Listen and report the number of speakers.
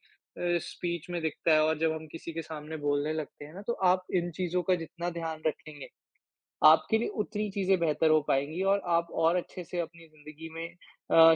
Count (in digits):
1